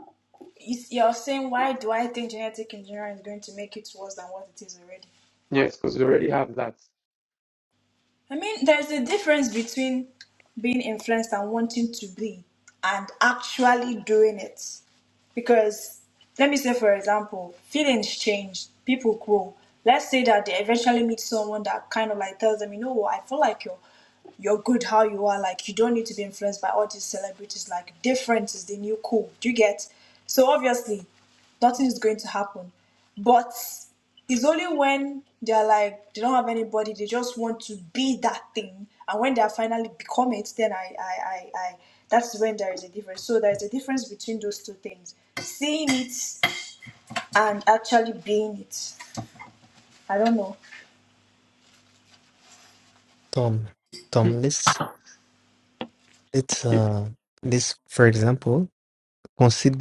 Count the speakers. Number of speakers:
3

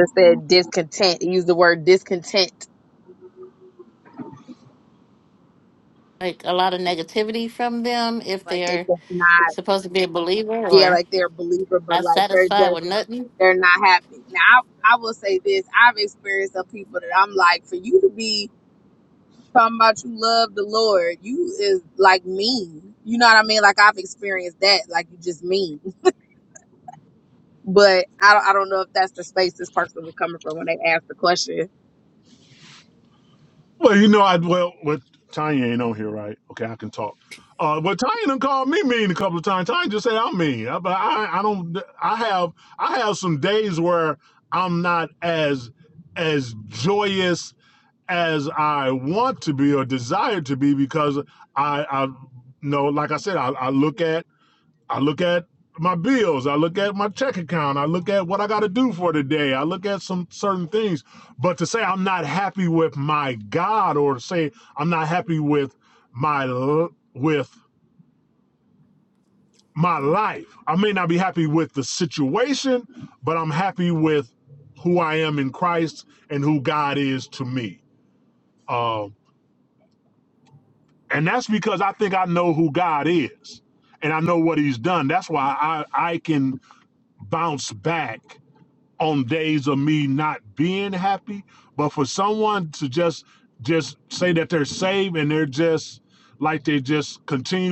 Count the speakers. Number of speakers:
3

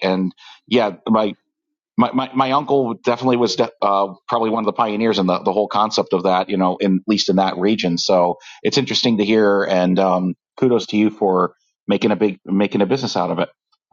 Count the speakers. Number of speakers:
1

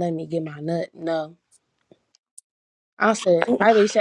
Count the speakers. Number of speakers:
1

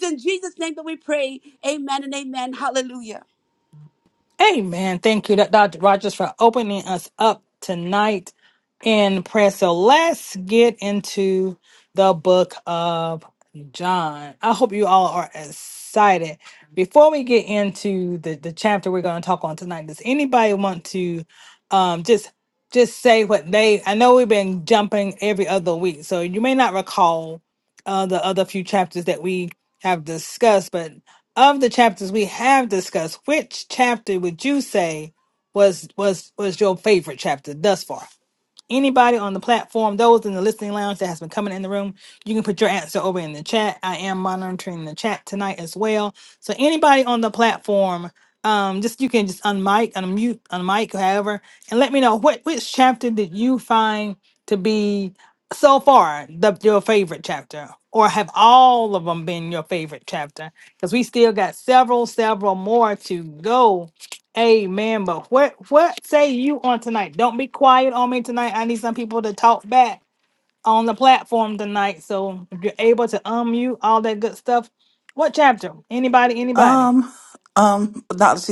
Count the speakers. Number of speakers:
3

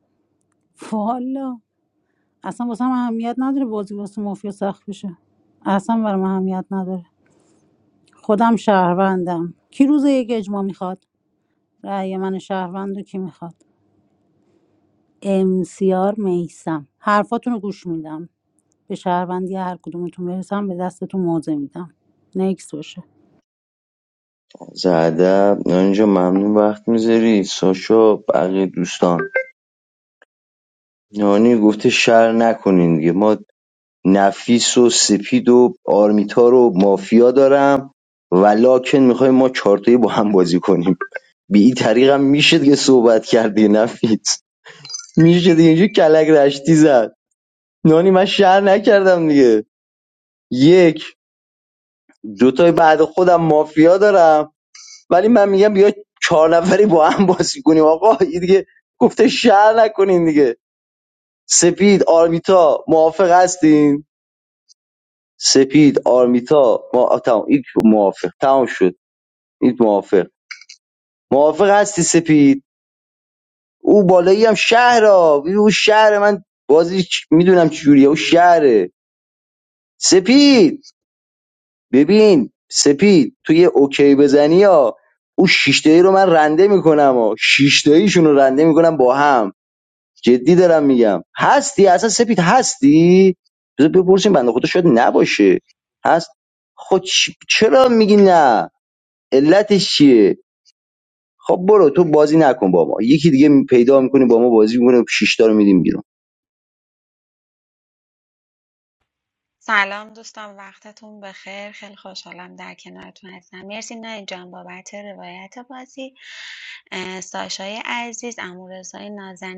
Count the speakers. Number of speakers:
3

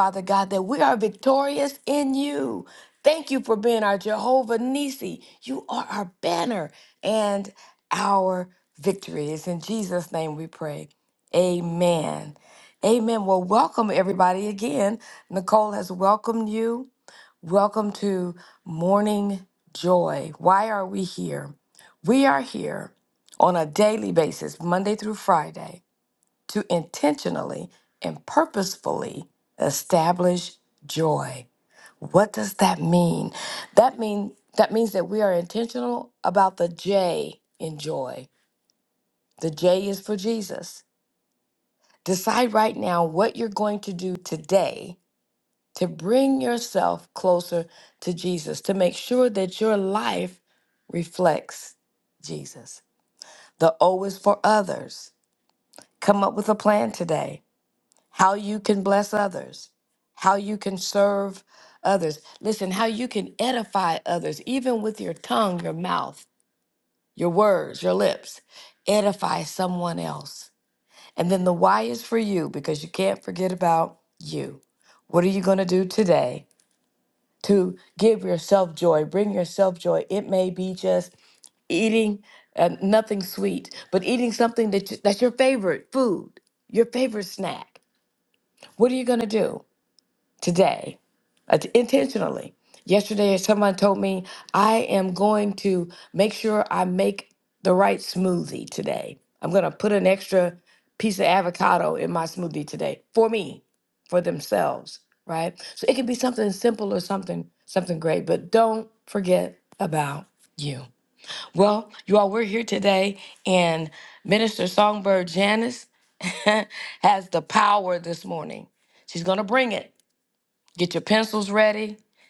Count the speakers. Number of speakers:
1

